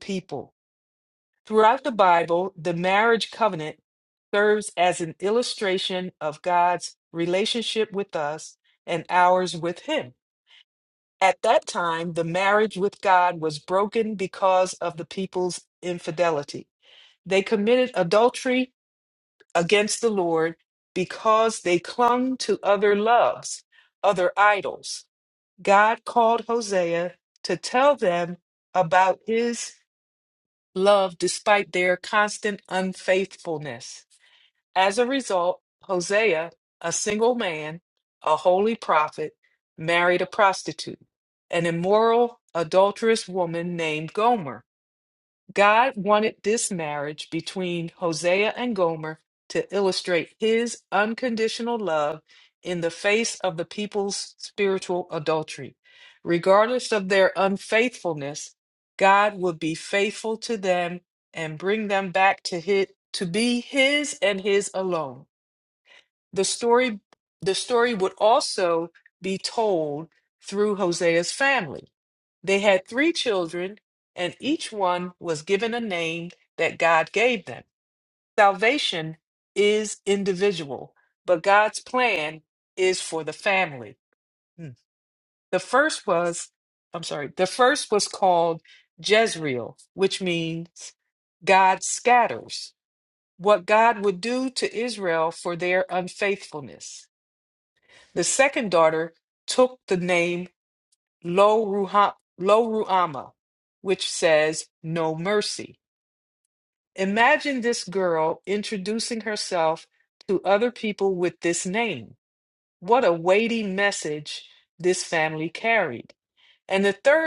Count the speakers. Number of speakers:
one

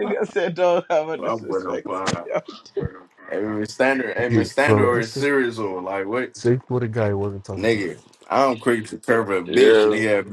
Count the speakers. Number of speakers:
three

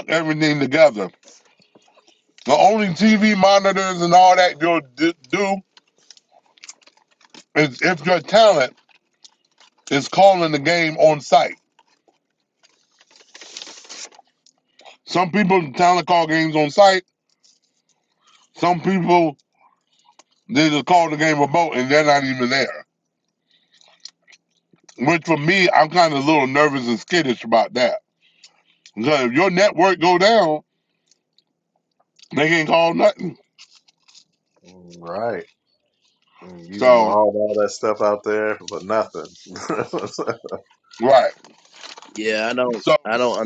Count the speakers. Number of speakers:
three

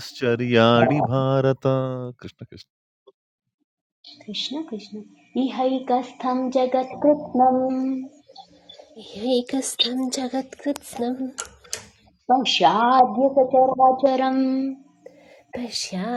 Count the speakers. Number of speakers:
three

